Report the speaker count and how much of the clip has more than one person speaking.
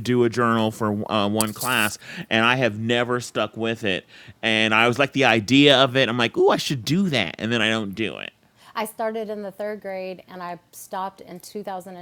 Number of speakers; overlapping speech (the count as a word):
two, no overlap